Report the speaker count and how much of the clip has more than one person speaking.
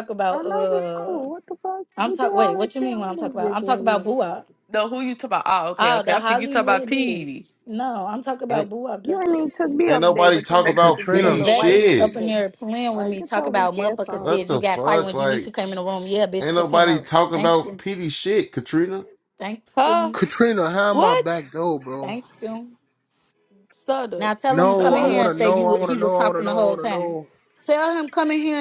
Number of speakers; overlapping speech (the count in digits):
5, about 53%